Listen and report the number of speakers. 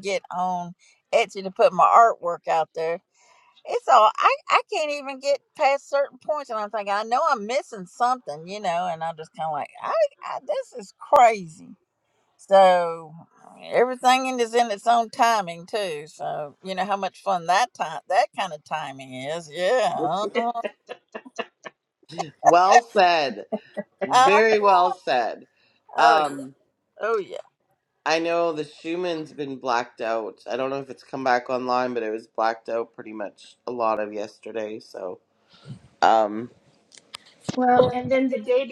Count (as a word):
three